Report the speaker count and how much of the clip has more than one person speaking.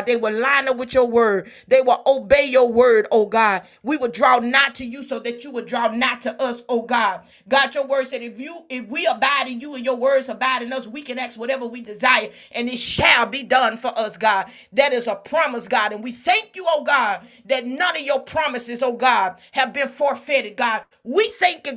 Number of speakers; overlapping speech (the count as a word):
one, no overlap